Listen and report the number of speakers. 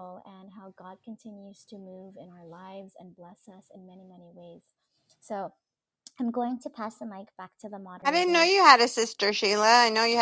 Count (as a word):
two